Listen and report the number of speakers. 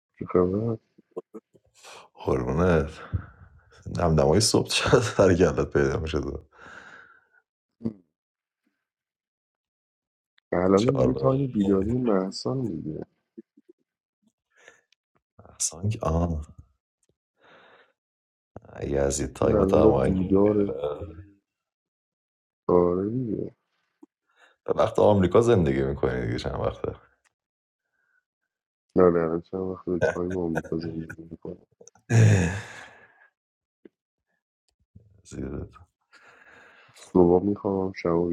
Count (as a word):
two